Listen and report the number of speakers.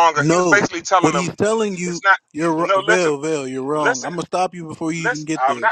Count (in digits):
2